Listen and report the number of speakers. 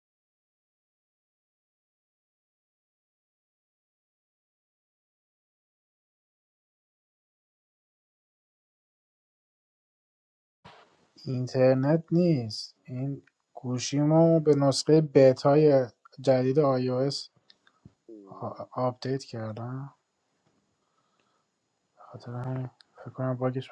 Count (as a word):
one